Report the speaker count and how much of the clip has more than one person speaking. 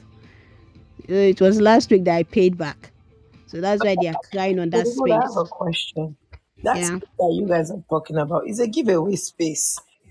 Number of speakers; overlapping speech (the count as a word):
two, about 8%